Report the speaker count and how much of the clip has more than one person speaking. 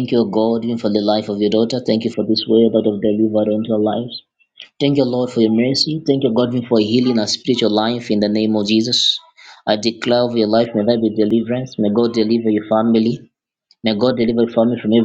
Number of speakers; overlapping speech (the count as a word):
one, no overlap